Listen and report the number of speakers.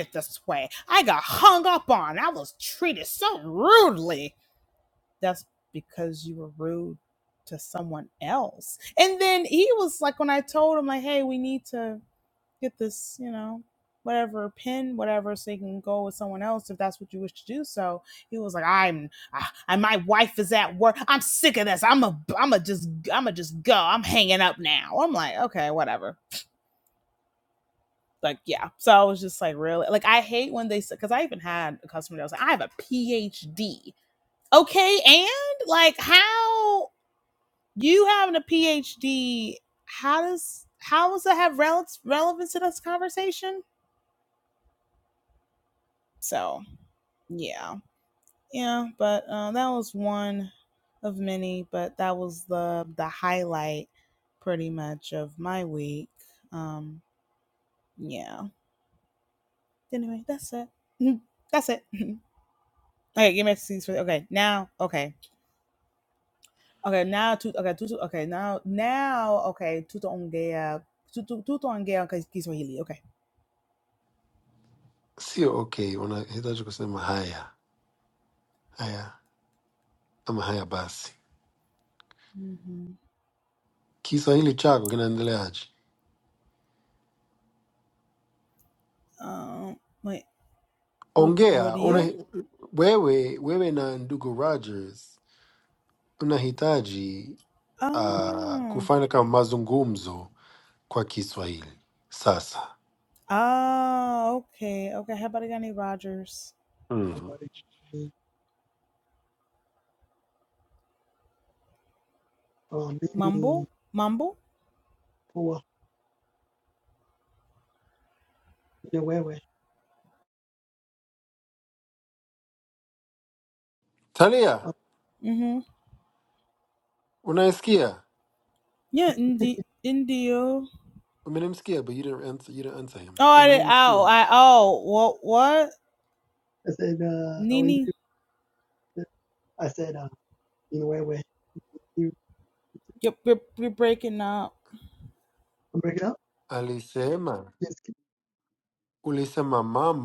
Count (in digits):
3